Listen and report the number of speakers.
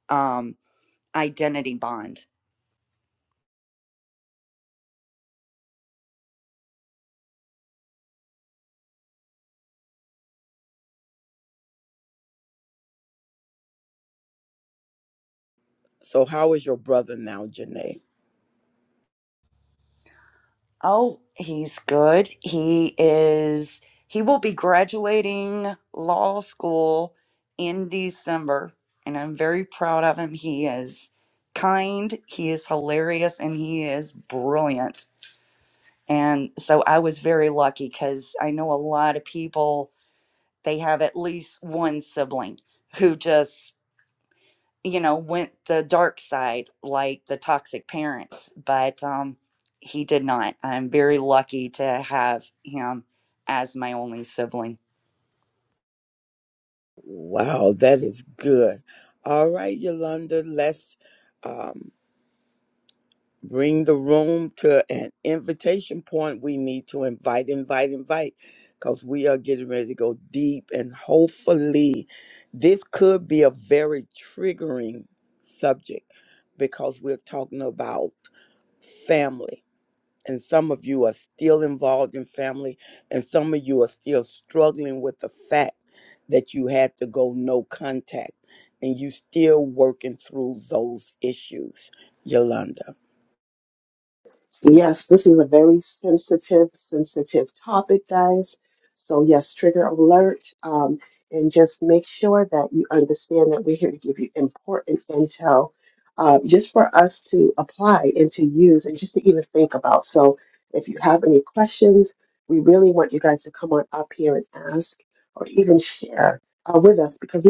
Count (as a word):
three